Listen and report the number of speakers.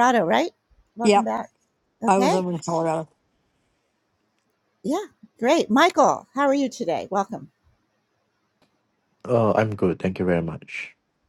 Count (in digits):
3